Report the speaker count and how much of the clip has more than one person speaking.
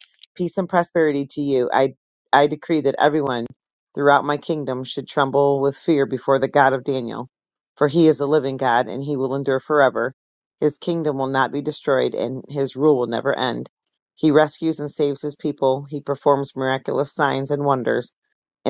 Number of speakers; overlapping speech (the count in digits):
1, no overlap